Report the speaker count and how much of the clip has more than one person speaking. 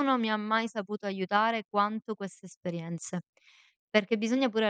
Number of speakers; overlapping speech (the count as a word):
one, no overlap